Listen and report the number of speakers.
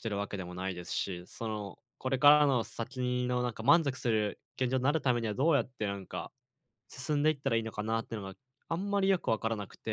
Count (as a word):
one